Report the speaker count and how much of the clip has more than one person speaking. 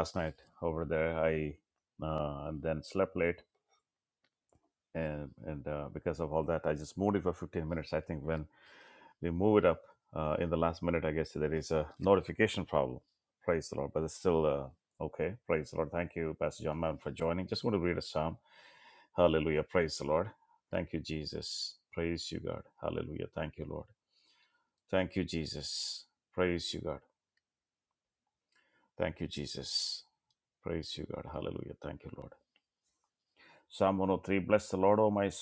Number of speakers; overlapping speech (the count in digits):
1, no overlap